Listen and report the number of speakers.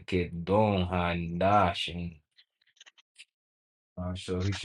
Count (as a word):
one